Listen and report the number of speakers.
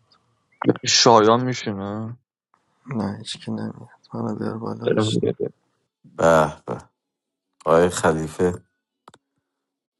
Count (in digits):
3